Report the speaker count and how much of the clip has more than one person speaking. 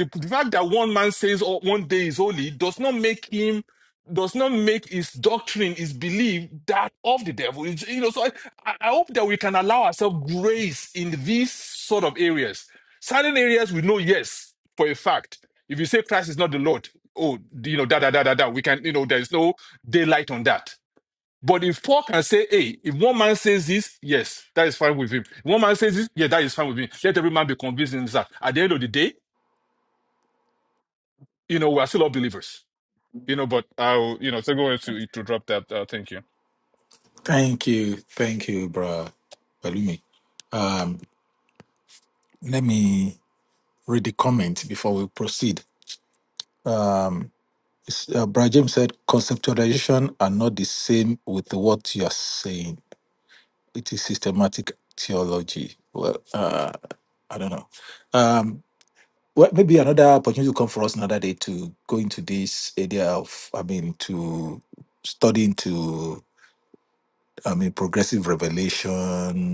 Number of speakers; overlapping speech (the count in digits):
2, no overlap